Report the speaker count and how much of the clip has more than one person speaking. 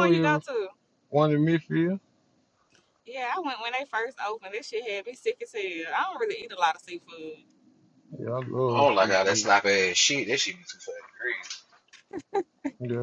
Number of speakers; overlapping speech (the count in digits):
3, about 9%